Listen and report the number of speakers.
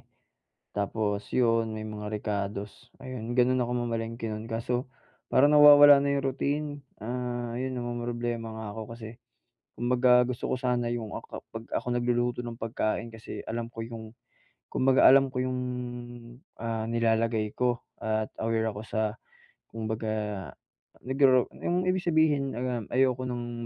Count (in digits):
1